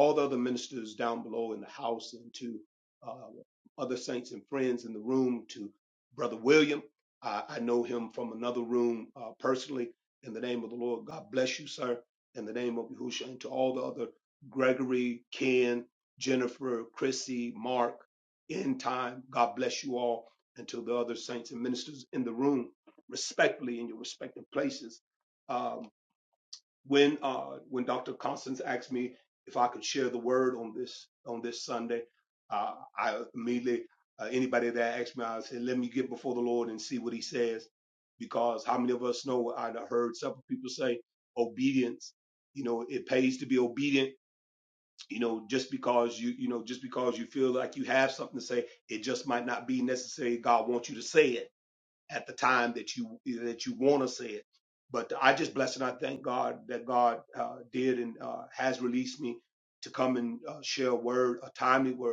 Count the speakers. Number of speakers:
one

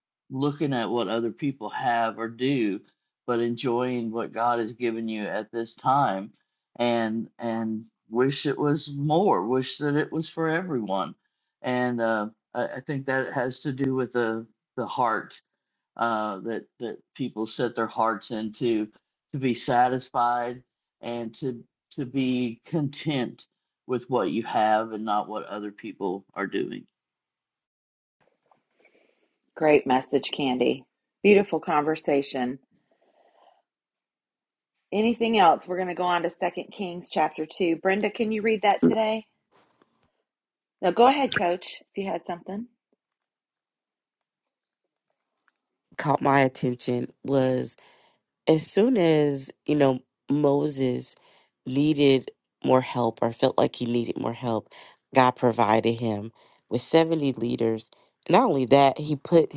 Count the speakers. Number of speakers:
three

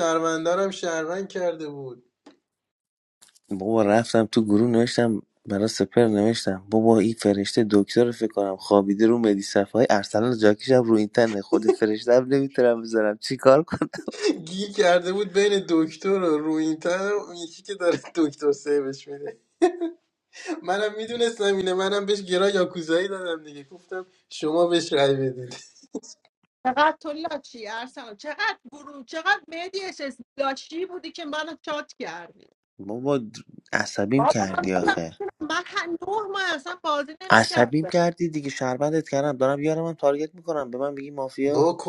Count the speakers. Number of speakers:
three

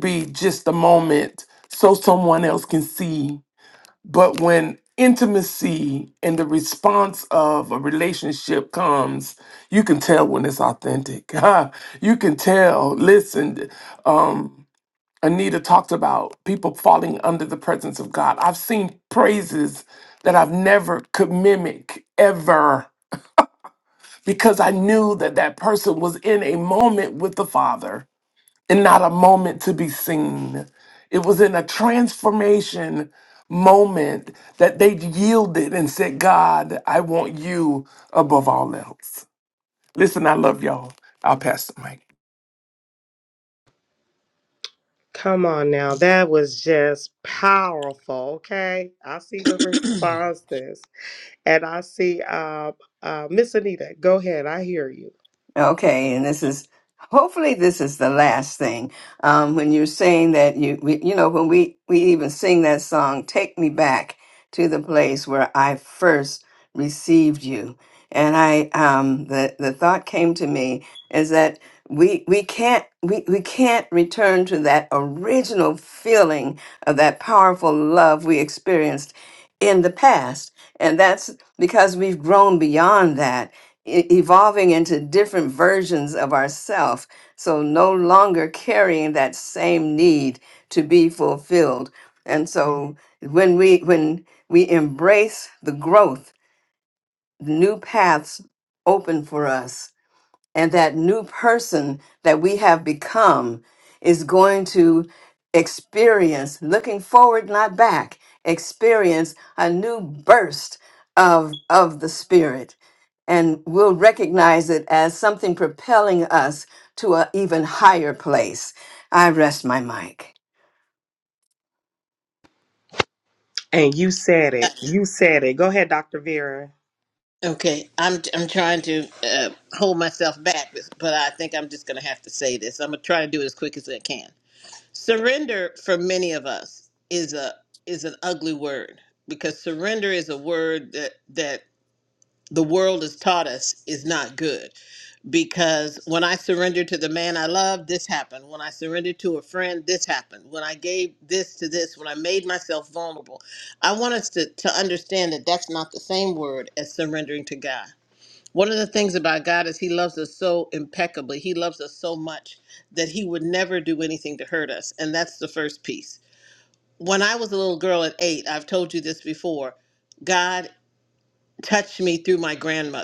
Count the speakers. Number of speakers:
four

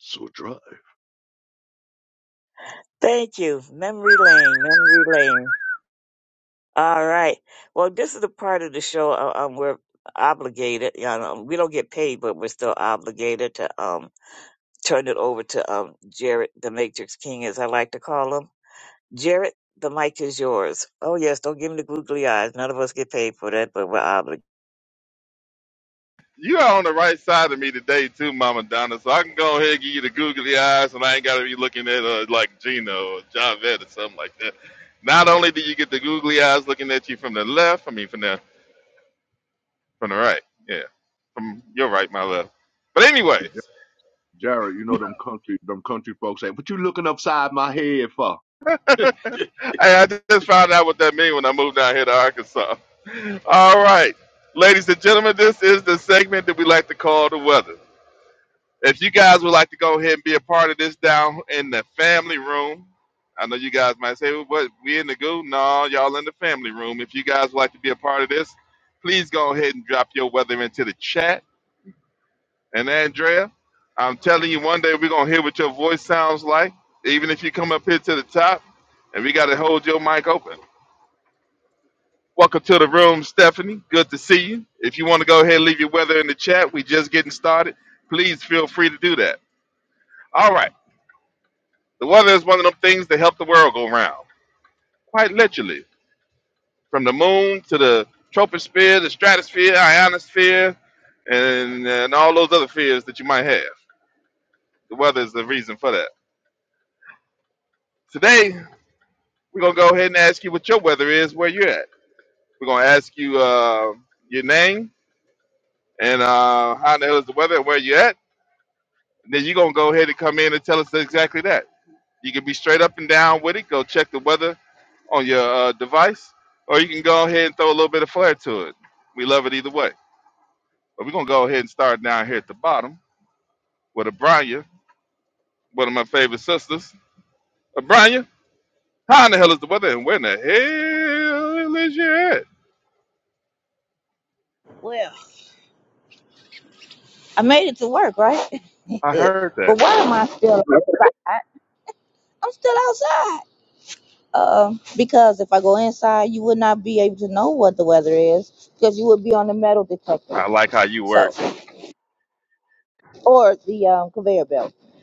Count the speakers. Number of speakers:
four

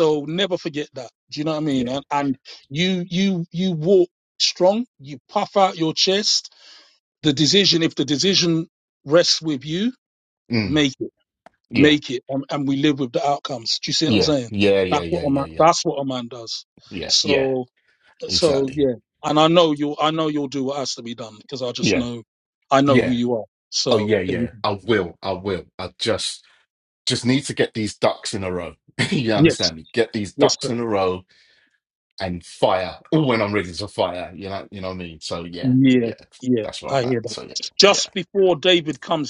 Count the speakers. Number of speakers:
two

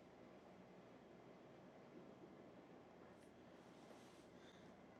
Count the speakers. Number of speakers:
zero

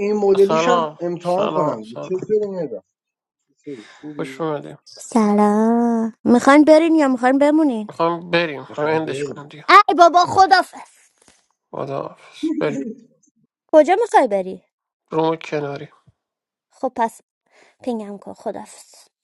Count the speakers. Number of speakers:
three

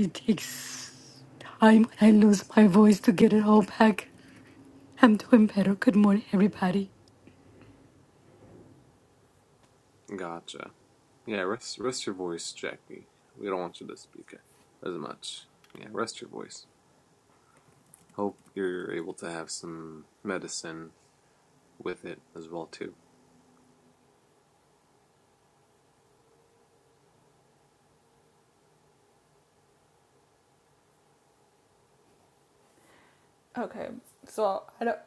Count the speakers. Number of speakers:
three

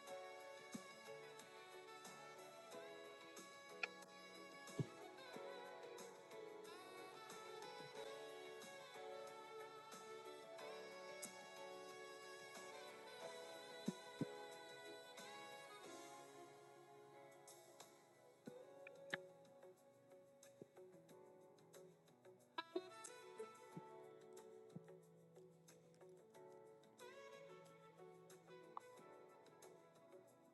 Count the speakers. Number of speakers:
zero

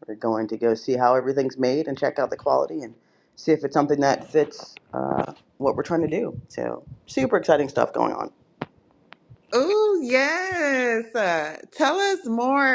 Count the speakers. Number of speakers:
two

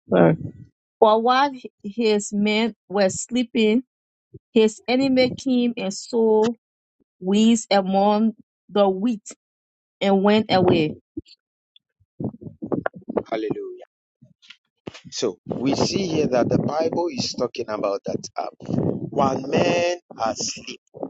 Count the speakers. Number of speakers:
two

